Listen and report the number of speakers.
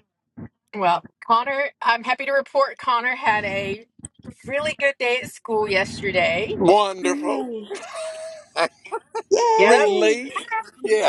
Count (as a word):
three